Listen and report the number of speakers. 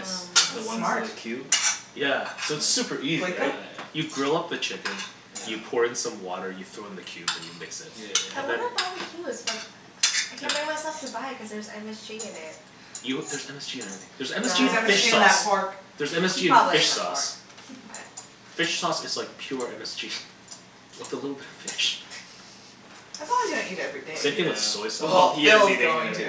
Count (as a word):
four